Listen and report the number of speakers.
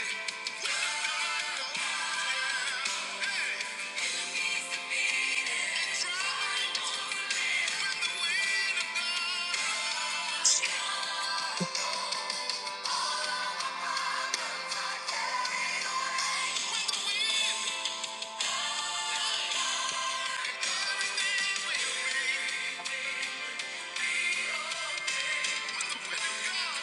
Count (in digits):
0